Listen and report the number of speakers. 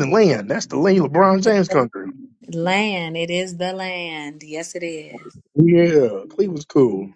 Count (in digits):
2